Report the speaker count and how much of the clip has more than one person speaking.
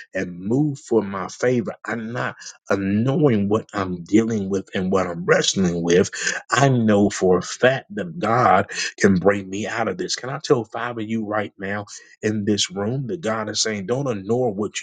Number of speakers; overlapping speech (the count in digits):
1, no overlap